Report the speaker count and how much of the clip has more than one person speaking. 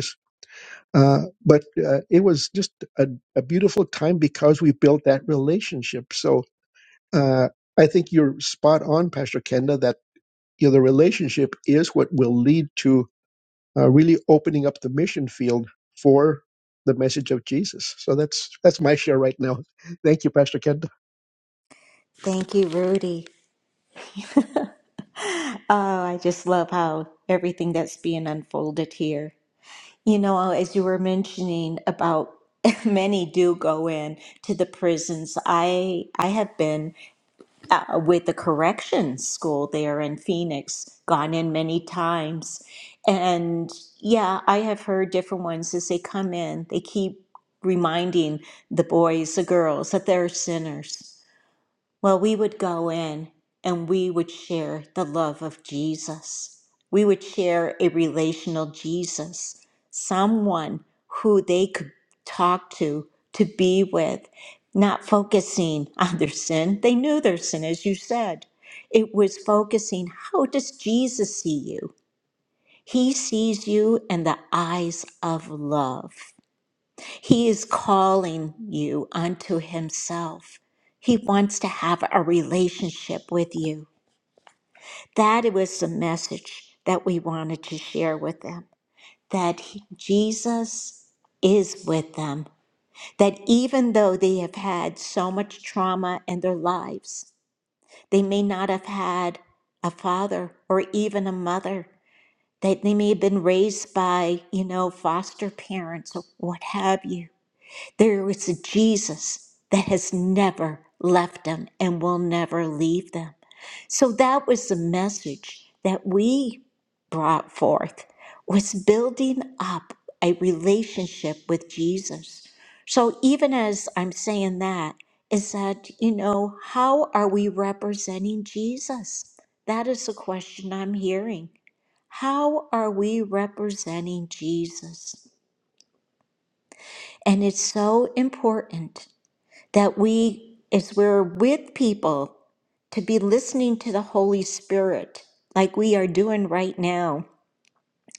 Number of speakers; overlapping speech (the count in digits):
2, no overlap